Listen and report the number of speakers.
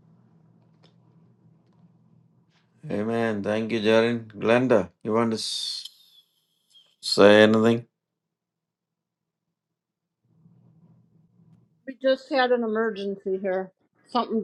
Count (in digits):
2